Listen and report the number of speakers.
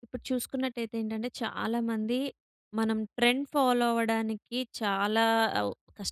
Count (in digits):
1